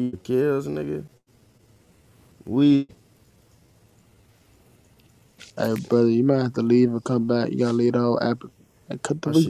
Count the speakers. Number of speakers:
two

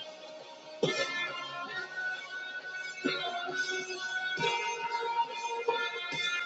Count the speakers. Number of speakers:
zero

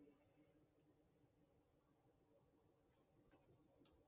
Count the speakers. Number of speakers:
zero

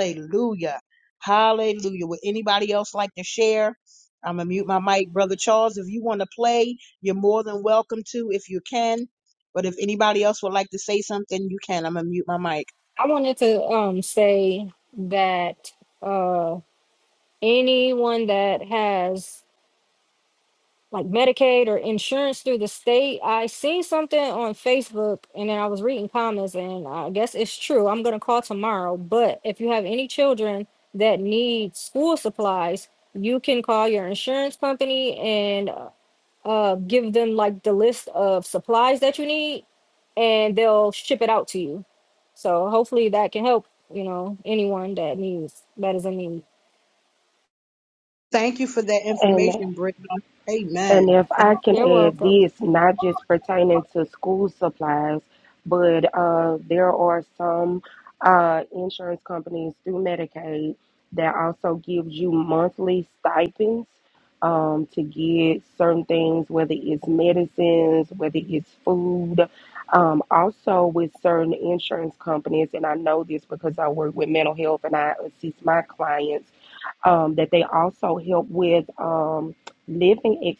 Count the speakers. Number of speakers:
three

